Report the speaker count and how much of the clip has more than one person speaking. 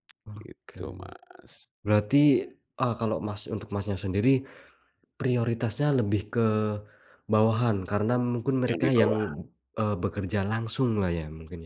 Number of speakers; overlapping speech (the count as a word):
two, about 9%